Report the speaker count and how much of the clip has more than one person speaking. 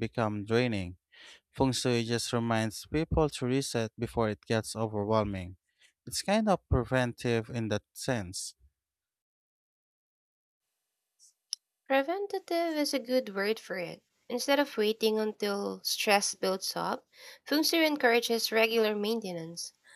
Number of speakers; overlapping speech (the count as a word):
two, no overlap